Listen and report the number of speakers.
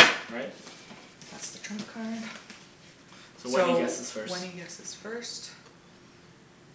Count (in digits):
2